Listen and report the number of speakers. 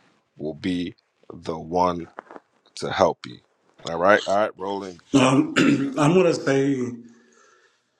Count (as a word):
two